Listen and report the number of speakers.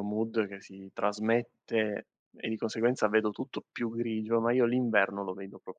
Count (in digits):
1